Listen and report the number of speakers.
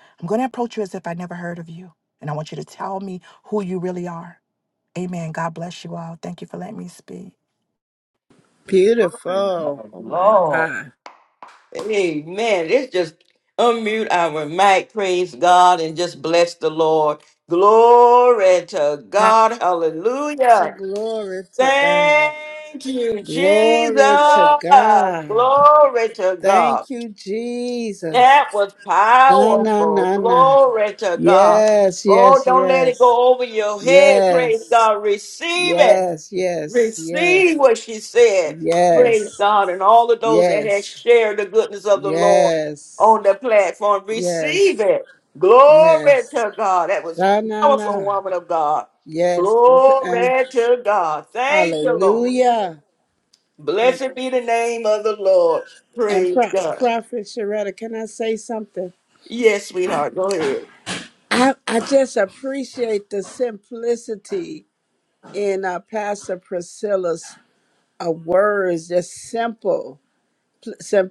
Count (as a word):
three